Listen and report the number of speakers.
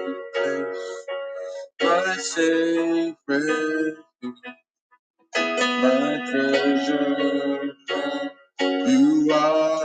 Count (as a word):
one